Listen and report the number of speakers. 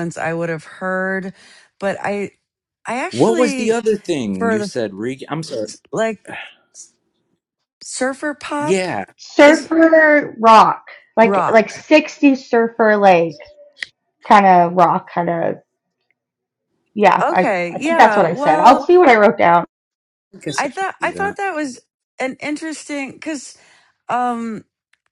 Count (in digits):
3